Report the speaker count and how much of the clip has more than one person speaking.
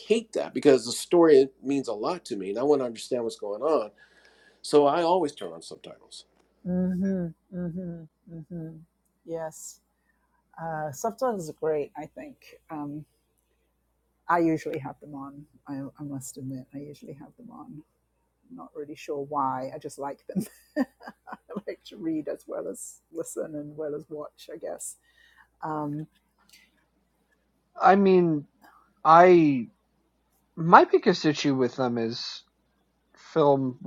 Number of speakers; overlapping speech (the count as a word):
three, no overlap